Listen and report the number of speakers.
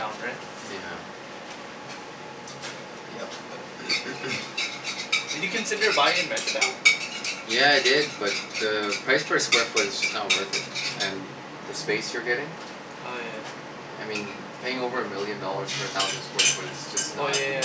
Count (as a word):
two